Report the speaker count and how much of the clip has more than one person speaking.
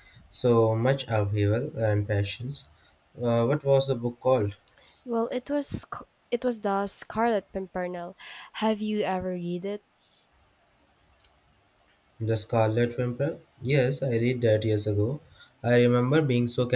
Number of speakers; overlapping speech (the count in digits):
2, no overlap